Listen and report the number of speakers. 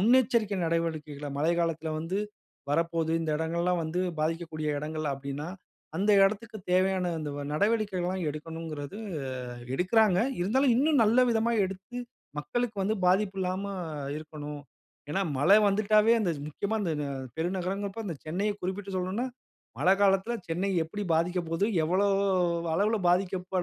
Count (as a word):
one